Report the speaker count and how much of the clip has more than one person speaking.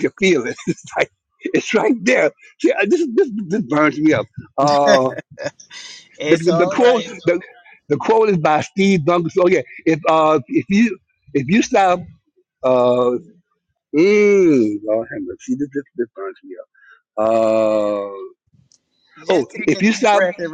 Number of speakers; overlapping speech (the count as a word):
two, about 9%